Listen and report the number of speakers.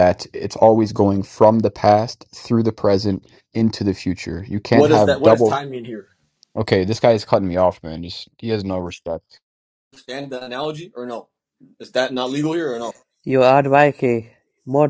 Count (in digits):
3